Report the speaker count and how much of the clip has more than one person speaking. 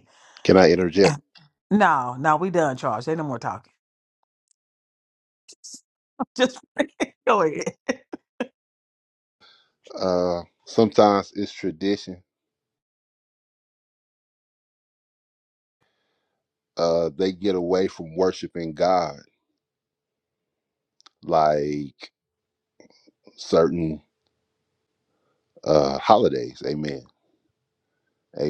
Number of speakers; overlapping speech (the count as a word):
two, no overlap